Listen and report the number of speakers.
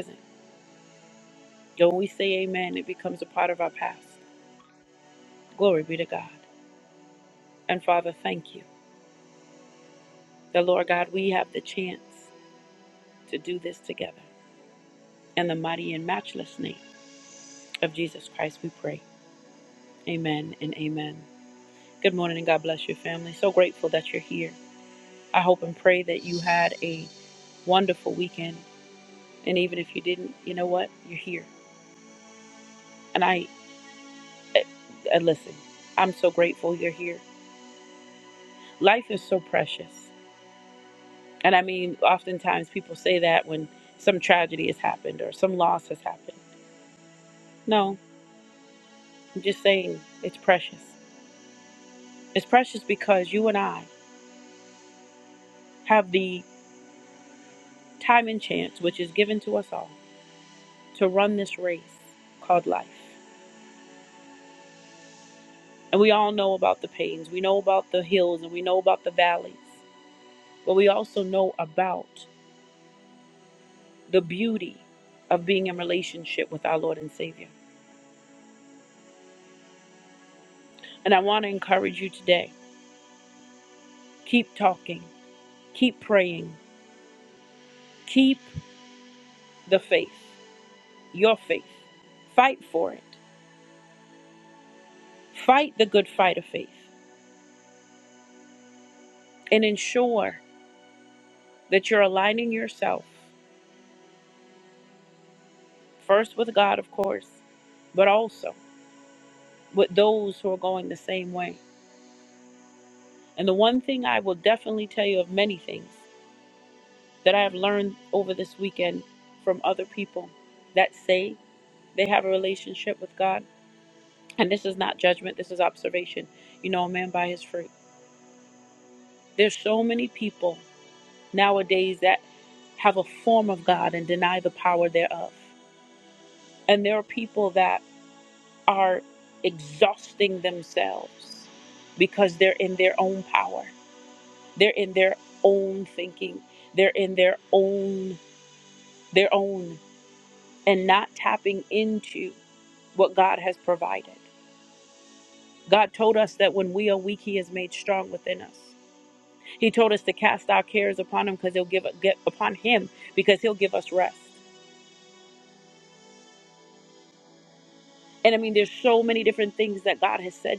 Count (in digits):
1